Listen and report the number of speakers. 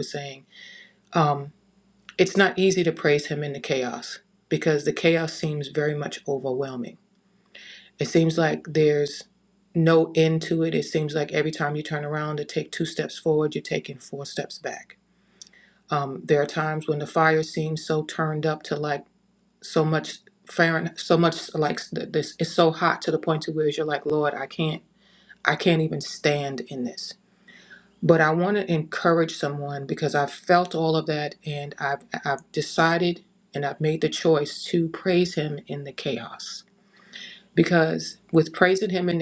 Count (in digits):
1